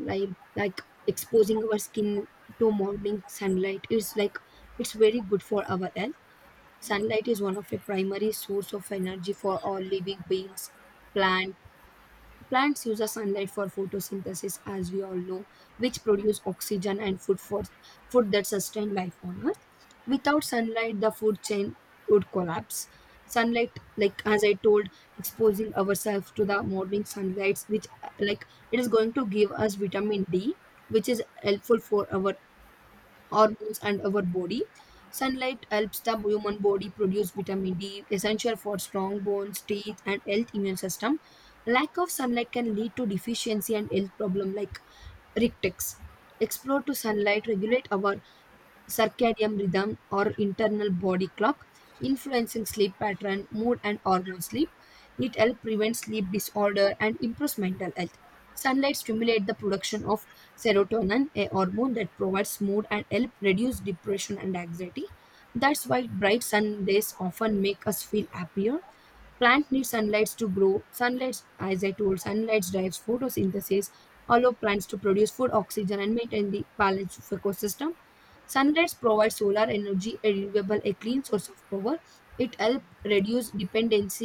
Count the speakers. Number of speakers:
1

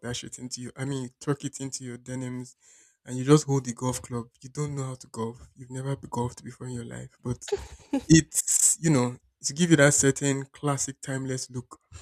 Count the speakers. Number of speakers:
1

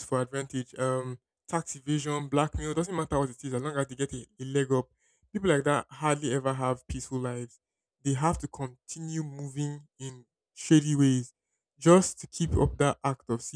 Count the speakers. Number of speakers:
1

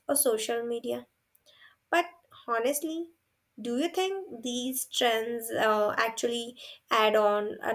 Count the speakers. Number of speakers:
1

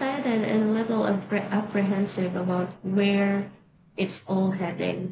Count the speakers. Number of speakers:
1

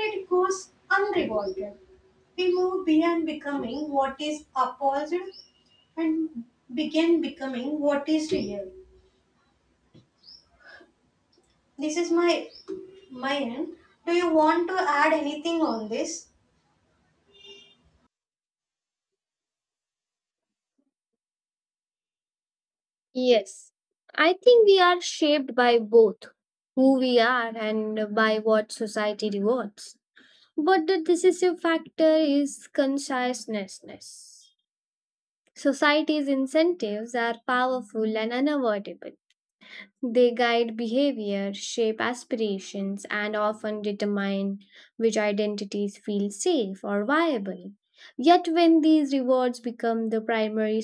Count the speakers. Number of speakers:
2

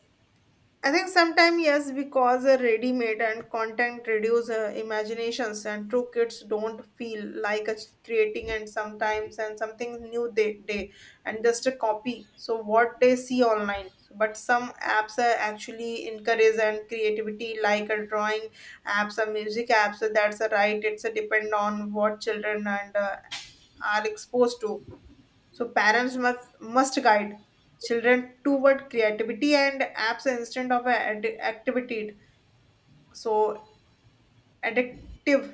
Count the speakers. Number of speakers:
1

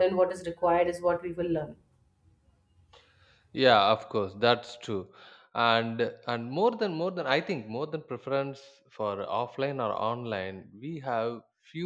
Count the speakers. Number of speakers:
2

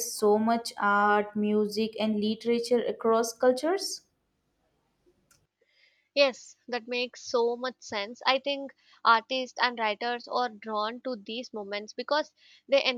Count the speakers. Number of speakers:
2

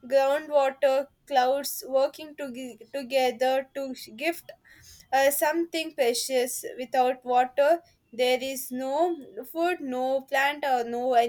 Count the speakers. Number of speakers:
1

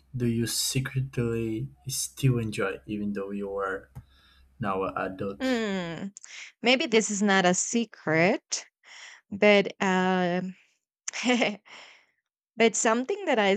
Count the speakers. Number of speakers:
2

